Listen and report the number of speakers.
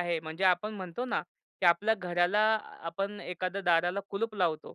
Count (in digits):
1